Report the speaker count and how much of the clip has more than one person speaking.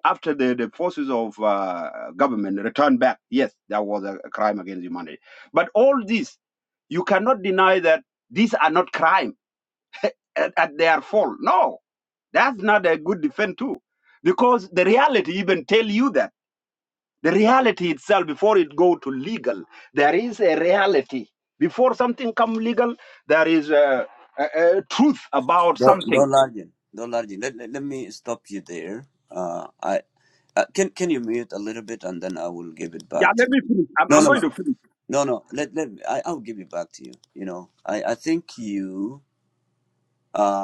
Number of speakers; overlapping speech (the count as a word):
two, about 3%